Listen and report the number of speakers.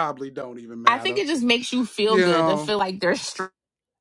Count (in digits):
2